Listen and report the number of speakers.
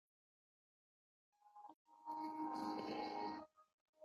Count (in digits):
0